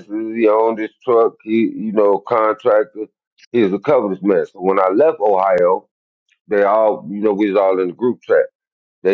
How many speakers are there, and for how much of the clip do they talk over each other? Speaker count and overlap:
one, no overlap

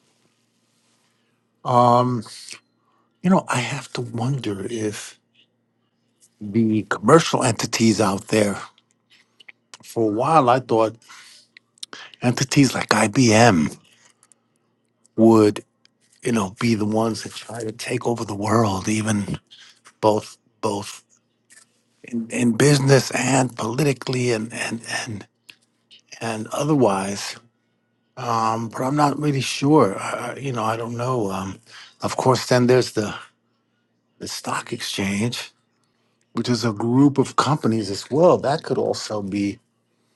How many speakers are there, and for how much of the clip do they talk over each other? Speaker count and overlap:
one, no overlap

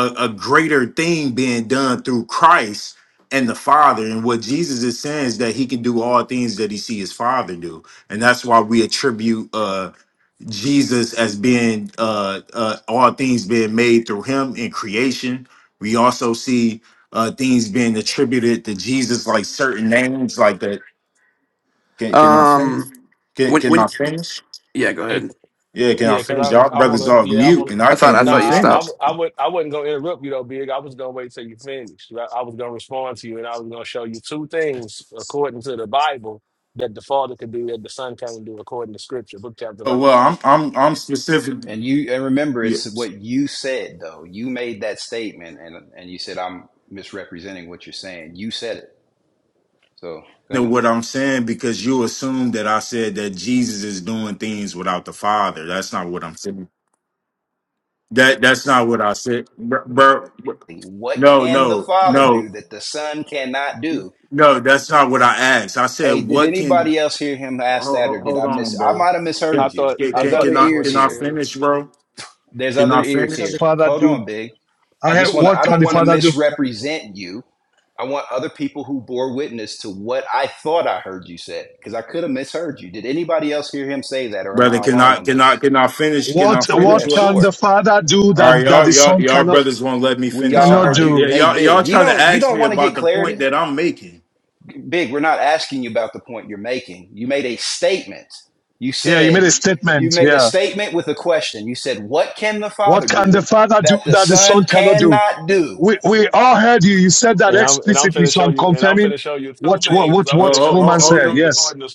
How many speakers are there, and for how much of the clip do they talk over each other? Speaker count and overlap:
five, about 23%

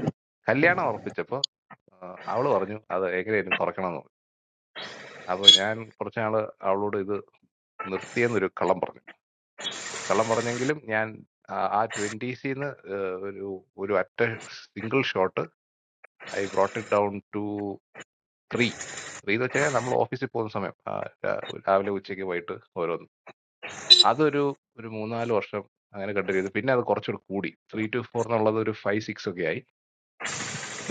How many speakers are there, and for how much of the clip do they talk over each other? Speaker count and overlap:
one, no overlap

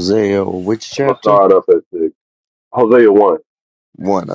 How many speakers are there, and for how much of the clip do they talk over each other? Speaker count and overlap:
two, about 10%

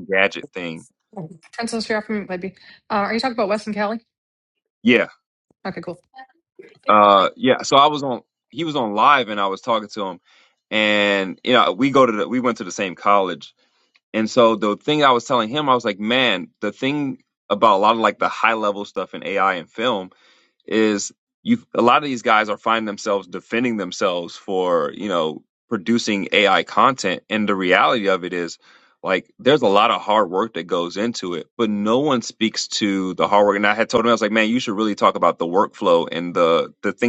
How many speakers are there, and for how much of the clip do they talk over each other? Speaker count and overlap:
two, no overlap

